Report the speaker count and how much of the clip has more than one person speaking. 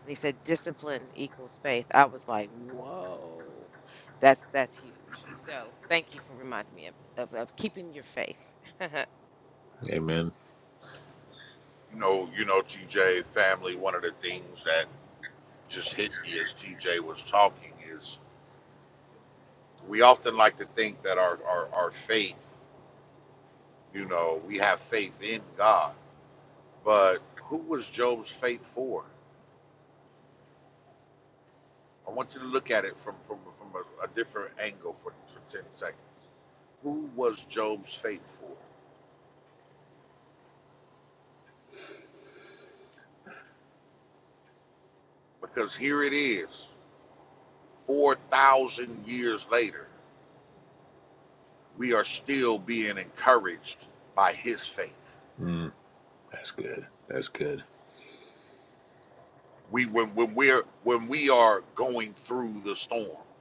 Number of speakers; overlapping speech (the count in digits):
3, no overlap